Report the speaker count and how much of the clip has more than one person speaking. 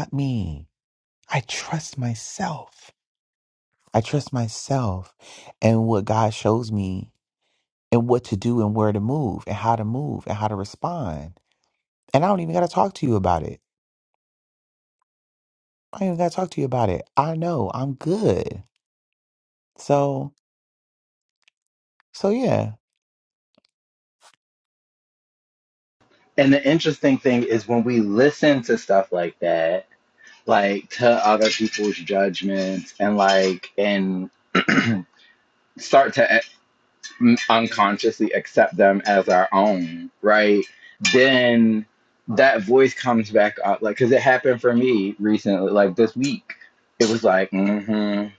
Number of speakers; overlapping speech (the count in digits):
2, no overlap